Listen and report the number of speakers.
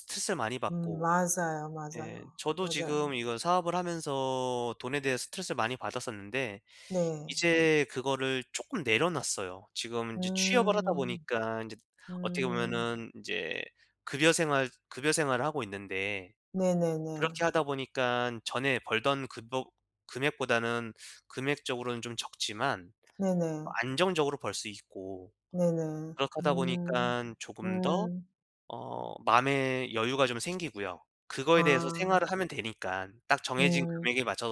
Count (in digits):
2